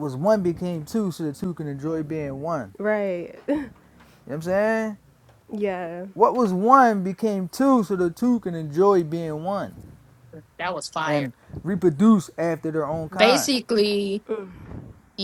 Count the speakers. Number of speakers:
3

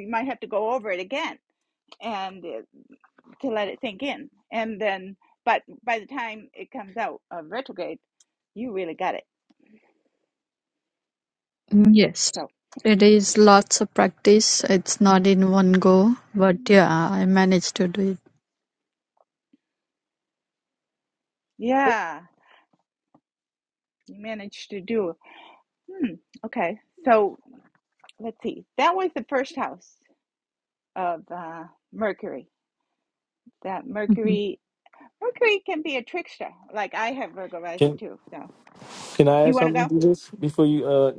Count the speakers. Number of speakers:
3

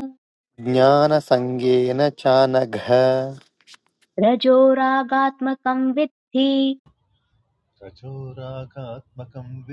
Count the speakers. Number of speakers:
3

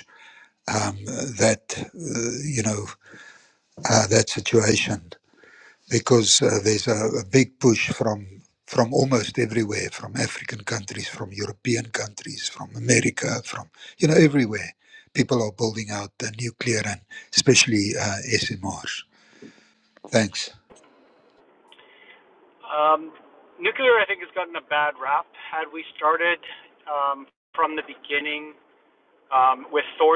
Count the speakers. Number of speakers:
2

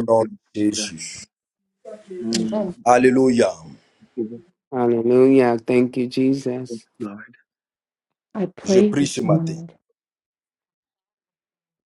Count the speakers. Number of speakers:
4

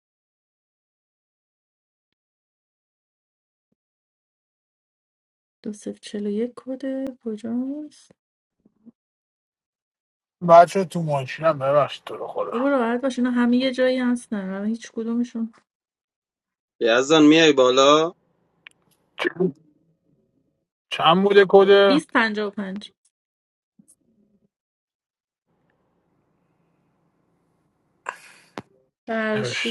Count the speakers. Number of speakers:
3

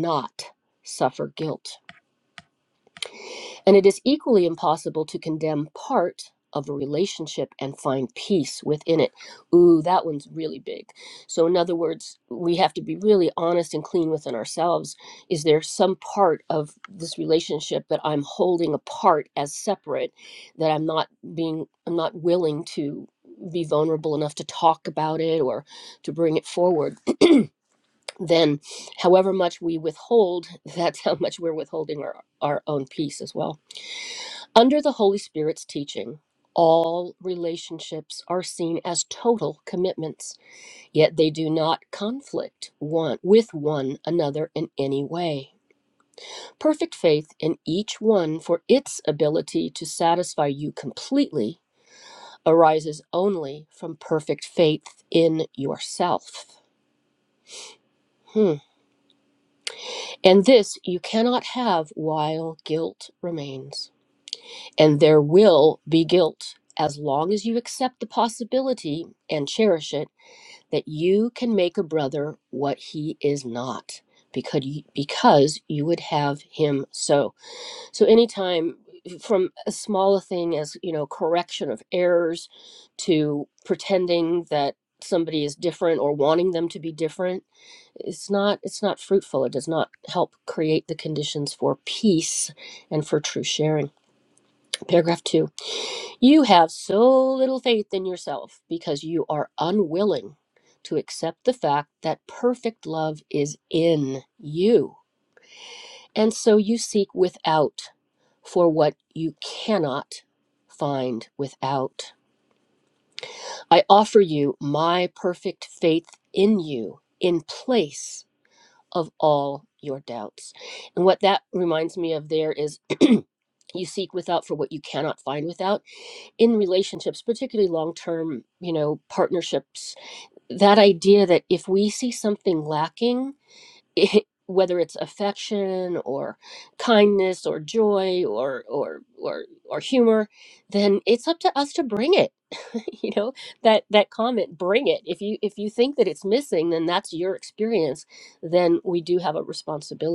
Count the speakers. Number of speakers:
1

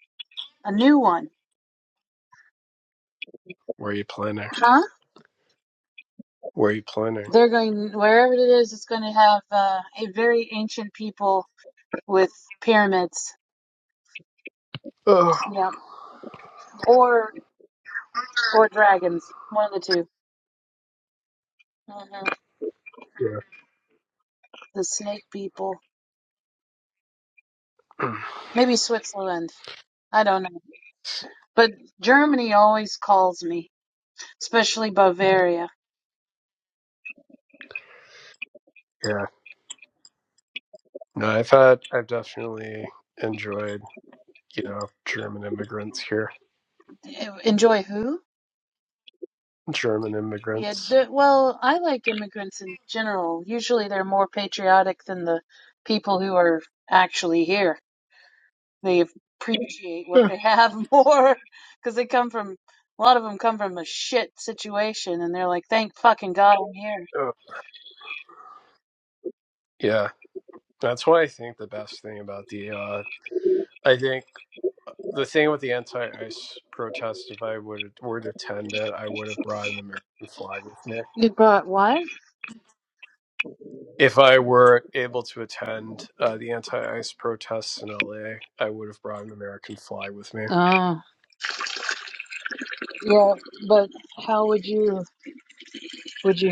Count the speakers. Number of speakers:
2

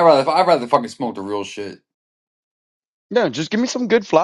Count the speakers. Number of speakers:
2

